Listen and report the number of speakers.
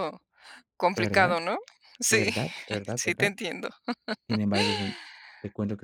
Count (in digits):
2